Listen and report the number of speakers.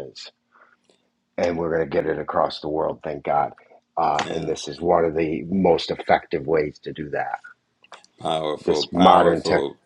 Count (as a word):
two